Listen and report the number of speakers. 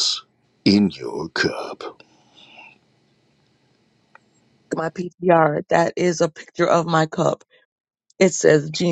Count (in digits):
2